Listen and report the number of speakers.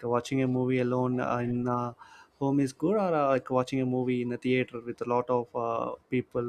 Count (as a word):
one